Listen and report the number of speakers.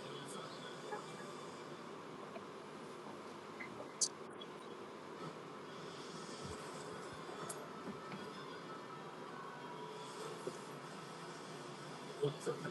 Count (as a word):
zero